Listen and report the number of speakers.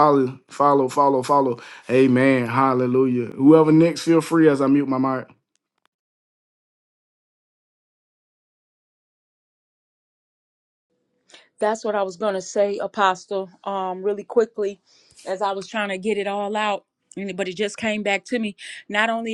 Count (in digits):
2